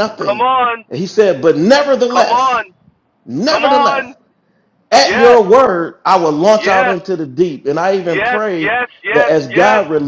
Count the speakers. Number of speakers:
two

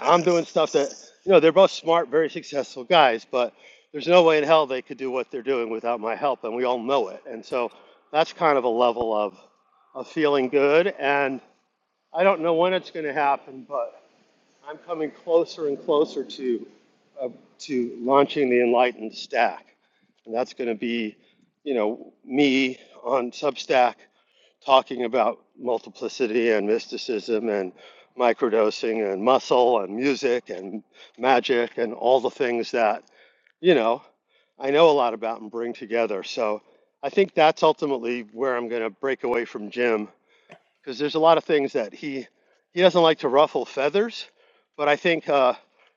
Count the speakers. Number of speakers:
one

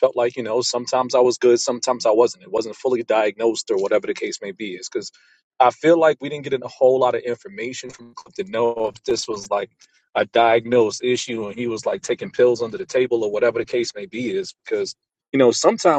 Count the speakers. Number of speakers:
one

